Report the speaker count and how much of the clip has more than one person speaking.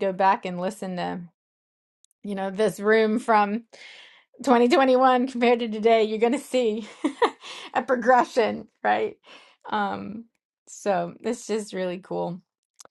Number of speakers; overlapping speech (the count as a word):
one, no overlap